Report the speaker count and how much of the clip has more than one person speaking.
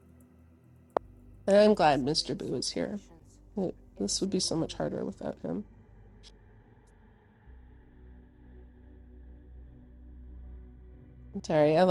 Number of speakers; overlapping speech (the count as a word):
one, no overlap